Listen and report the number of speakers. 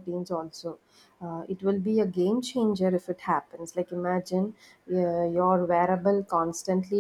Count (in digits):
1